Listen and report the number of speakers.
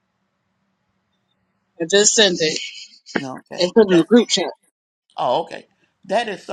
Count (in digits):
2